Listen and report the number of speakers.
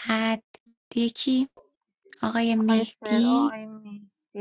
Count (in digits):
2